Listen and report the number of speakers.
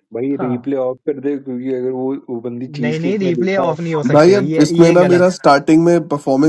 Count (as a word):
three